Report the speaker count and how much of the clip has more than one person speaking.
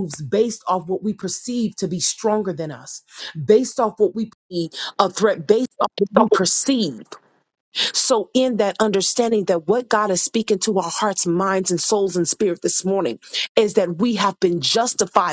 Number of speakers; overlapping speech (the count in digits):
1, no overlap